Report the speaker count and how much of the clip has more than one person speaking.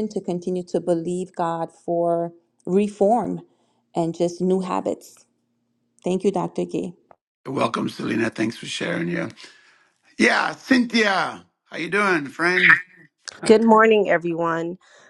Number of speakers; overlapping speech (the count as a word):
three, no overlap